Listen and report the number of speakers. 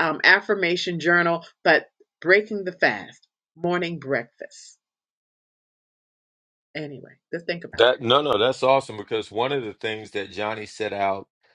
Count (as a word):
two